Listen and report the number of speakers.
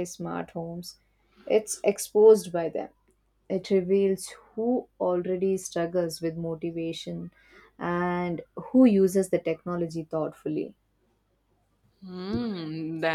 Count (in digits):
2